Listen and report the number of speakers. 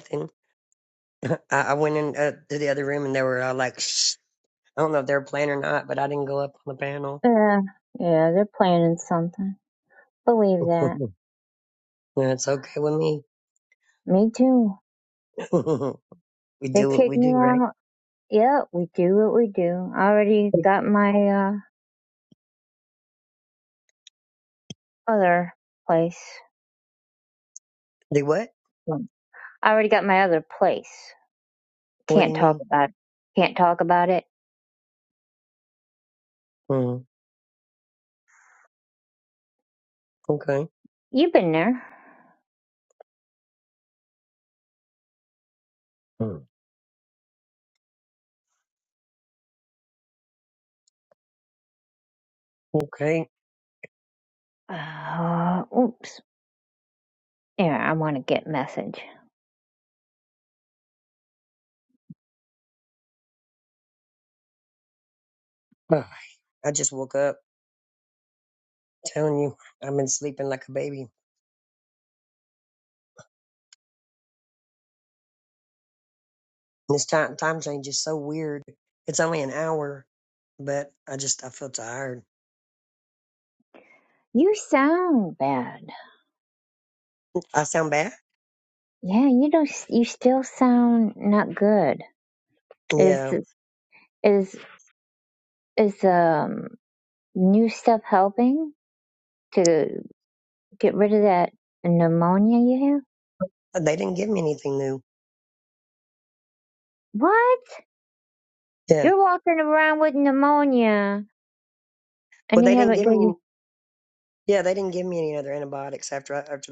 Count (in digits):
2